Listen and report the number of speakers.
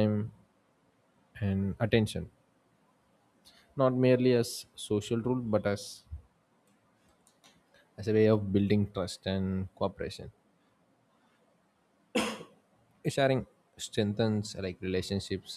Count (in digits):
1